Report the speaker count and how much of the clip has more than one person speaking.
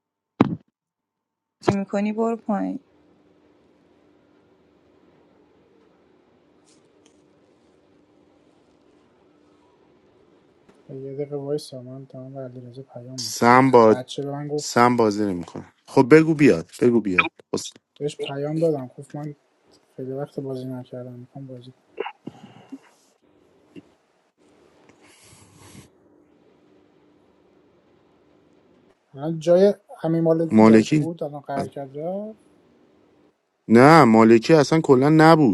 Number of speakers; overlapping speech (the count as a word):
three, about 3%